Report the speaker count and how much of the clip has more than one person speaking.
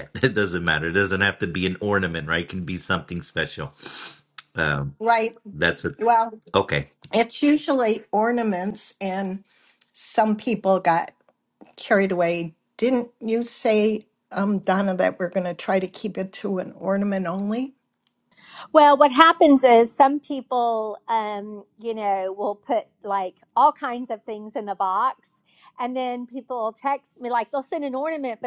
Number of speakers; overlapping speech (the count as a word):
three, no overlap